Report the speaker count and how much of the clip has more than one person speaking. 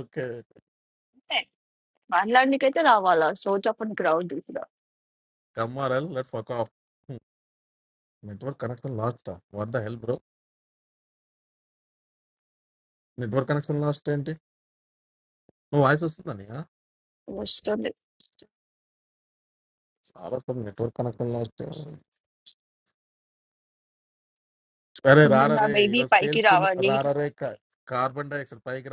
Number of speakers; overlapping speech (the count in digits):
2, about 5%